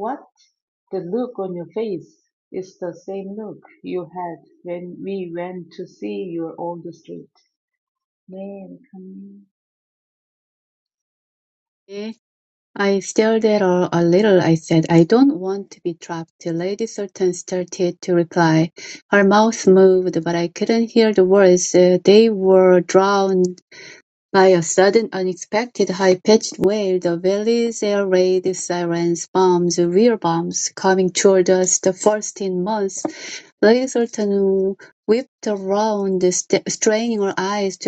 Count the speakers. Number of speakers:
2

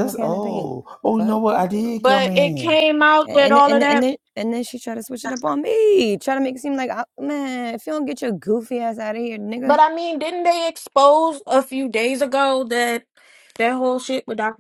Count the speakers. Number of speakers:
3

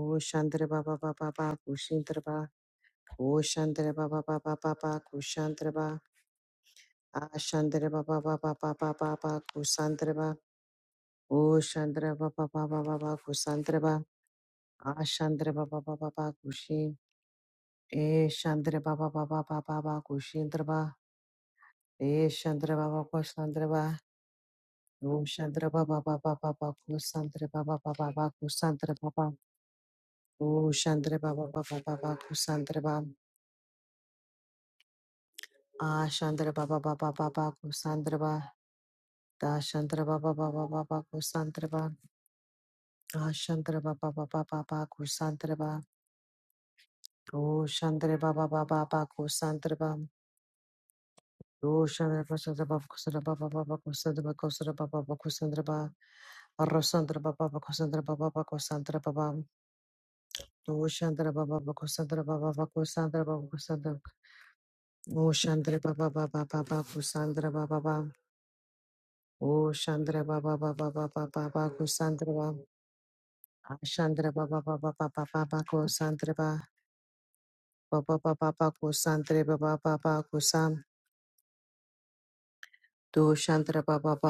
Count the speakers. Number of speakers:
1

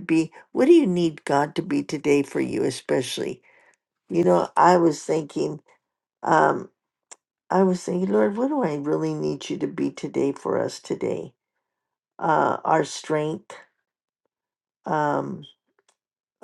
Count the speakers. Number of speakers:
1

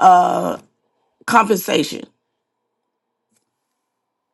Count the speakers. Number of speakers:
1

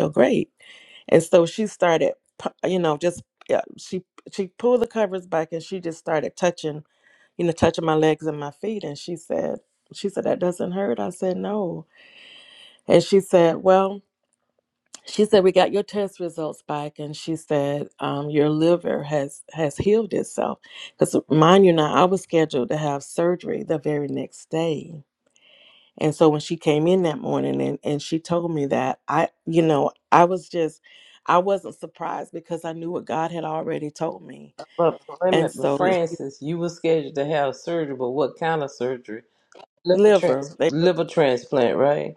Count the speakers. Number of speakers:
2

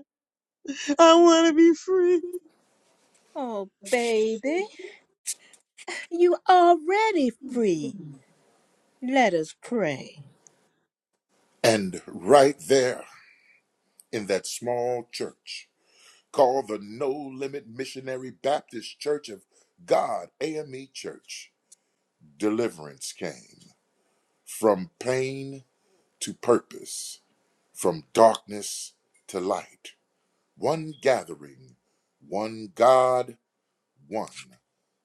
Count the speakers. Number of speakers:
3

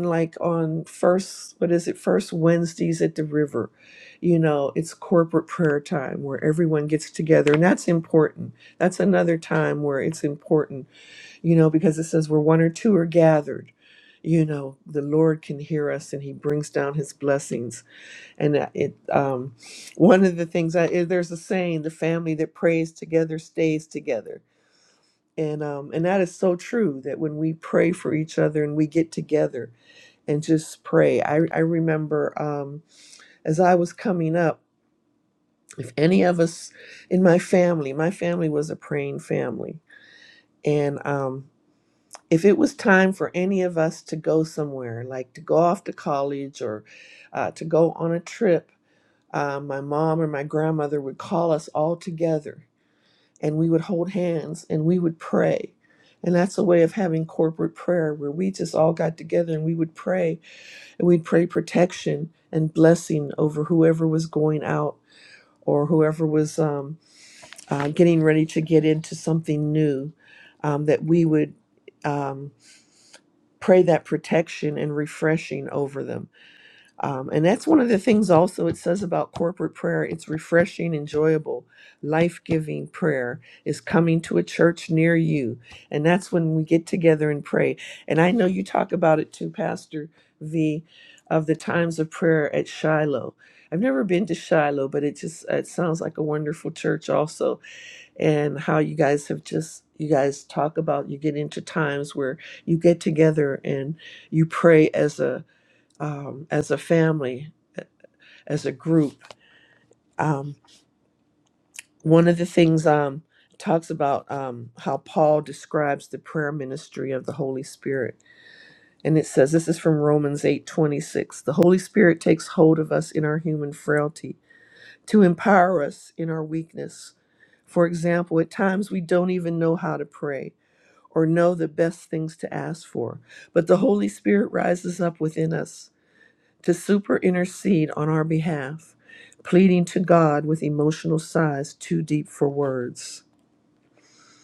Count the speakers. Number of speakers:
1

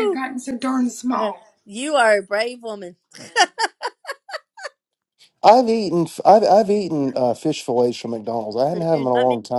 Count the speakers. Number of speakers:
3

